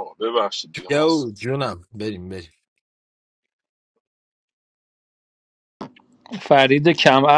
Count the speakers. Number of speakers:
3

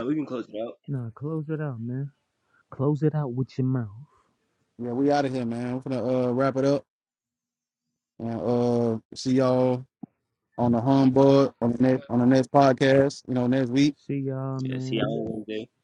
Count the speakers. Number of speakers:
3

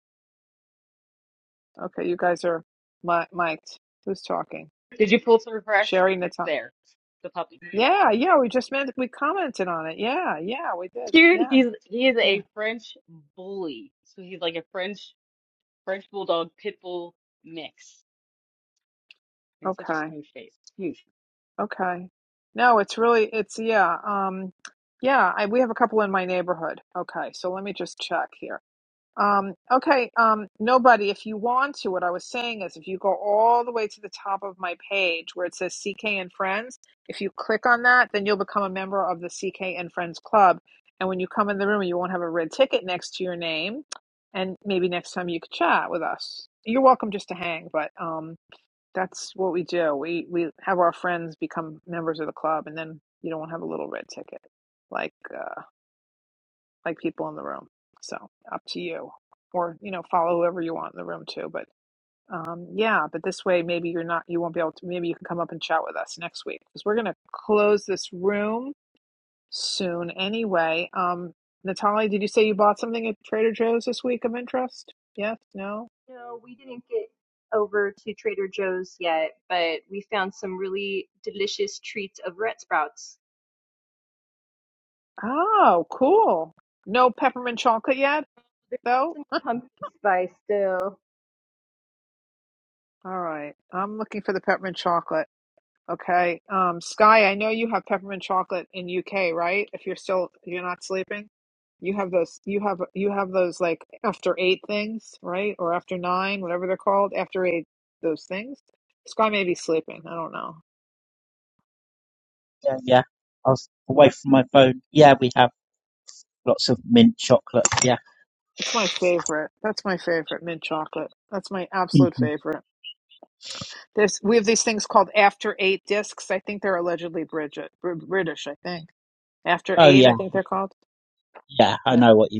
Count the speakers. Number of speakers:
4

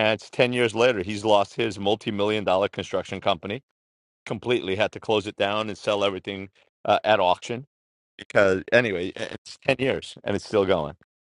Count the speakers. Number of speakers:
1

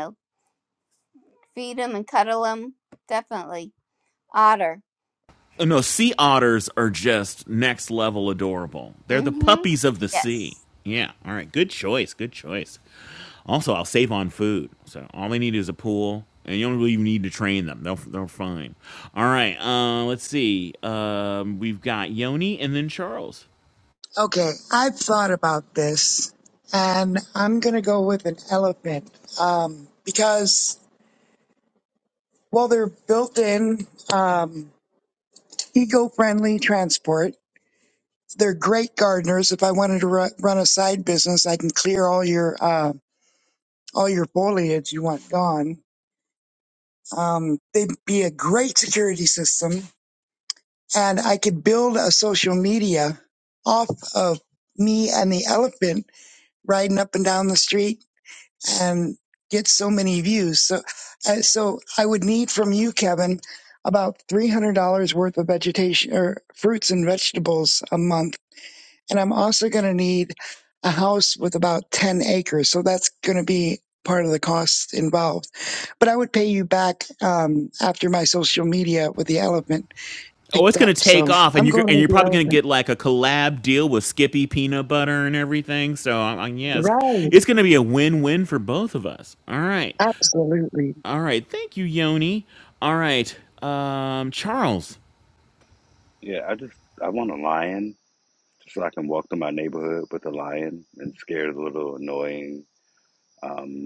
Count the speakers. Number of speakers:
4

